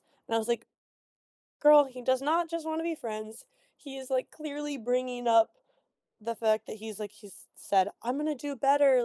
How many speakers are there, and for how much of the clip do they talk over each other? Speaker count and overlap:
one, no overlap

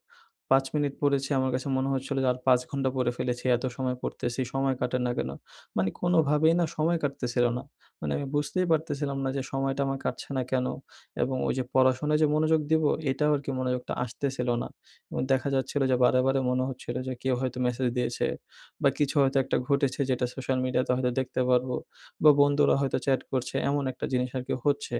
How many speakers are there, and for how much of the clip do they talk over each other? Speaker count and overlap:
one, no overlap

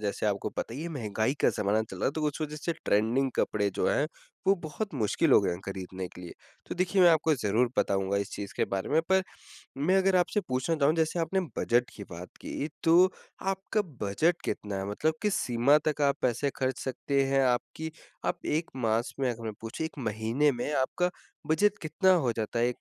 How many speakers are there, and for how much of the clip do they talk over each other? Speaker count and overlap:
one, no overlap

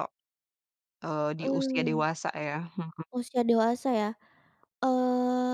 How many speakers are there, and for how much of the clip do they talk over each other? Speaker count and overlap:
two, about 11%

